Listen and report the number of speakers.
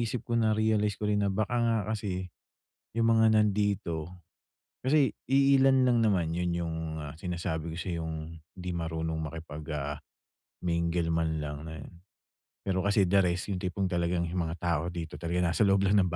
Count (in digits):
1